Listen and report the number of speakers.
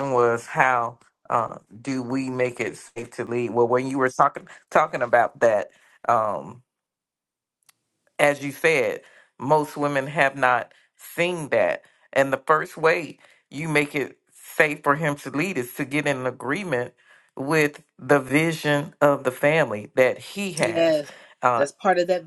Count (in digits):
2